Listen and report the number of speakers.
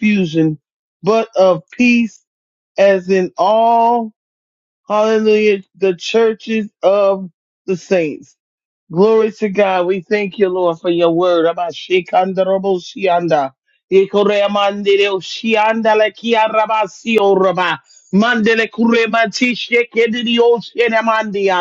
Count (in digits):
1